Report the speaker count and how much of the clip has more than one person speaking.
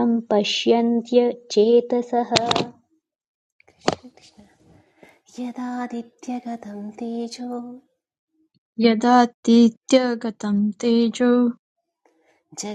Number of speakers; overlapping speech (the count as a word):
three, no overlap